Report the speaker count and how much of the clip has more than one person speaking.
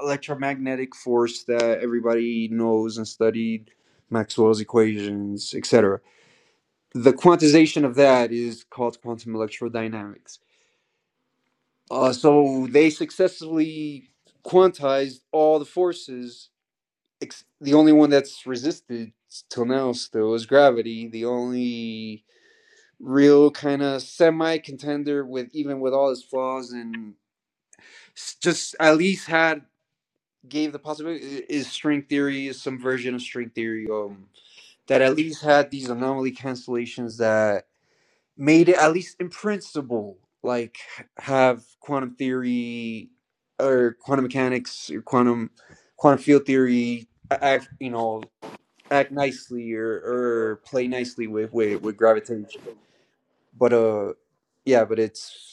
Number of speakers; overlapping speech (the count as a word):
one, no overlap